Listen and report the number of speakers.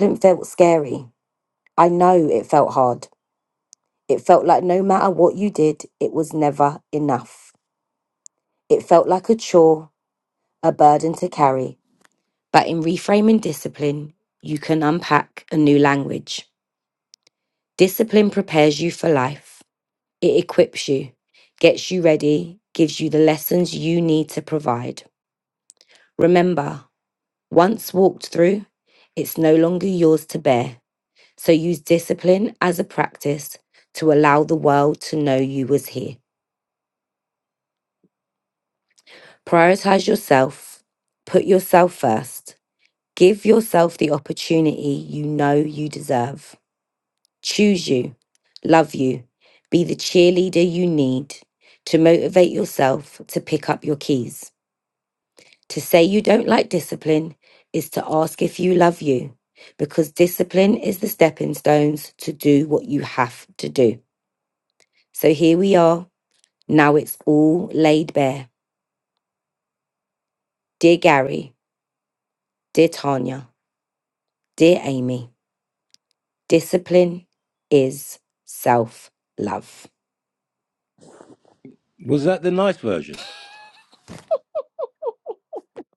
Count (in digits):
2